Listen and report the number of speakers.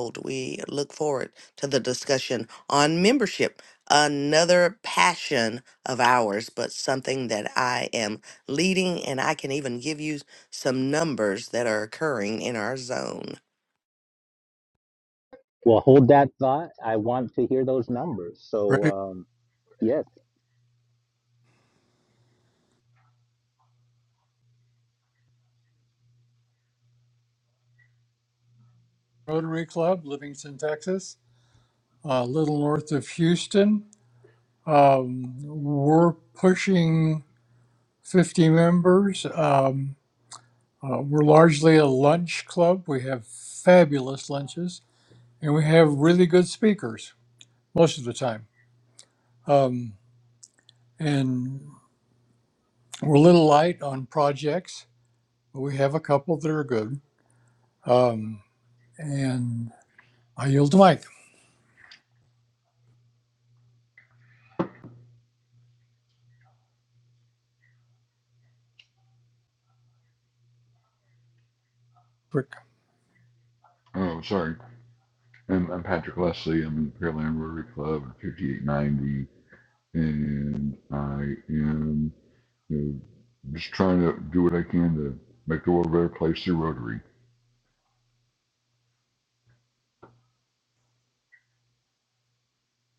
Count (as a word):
four